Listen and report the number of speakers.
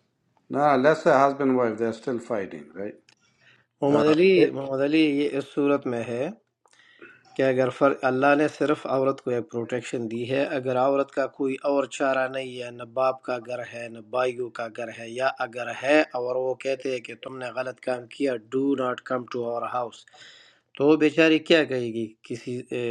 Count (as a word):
two